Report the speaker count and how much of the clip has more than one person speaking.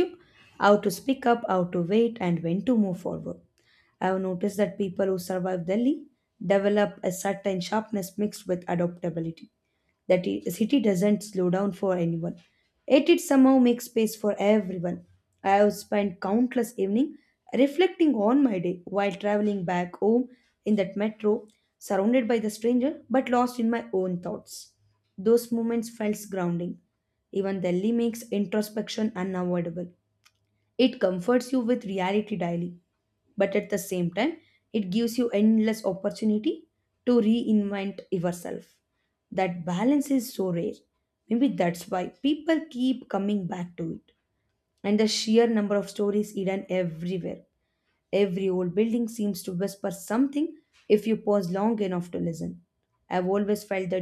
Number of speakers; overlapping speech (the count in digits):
1, no overlap